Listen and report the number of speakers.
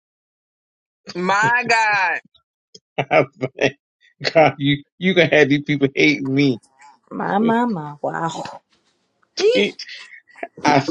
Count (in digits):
3